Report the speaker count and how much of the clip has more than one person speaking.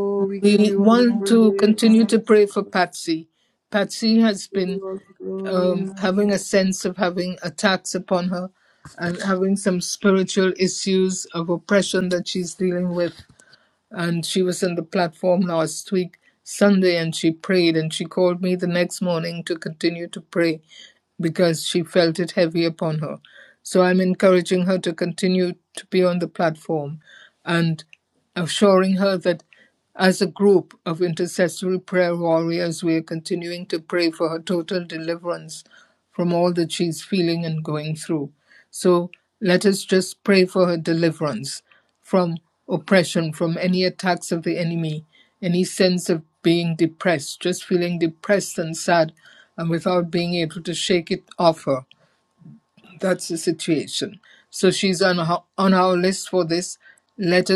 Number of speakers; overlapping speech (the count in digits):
2, about 5%